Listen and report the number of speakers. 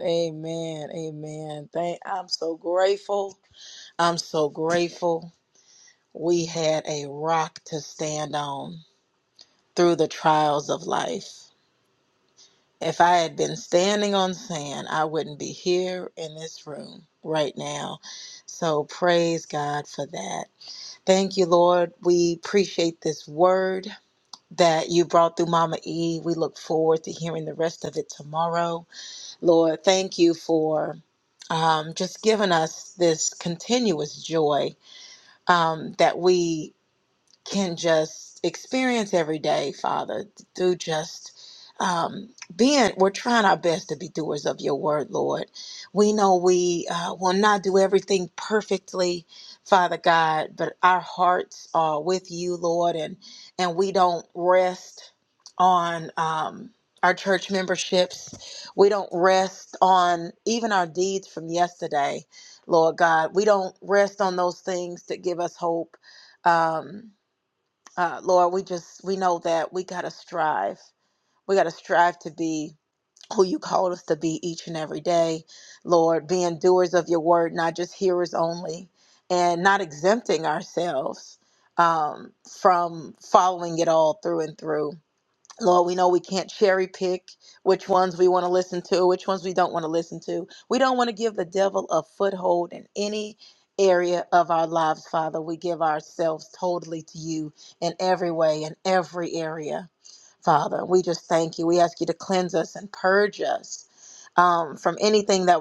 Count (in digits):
1